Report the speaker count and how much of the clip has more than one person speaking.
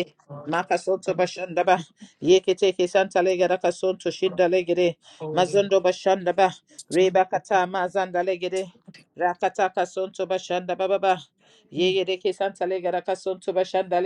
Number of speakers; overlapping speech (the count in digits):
2, about 12%